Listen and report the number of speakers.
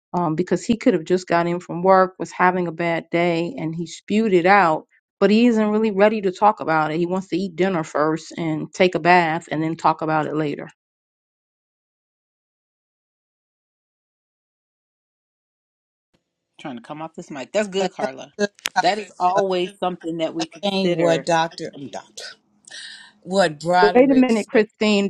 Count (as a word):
three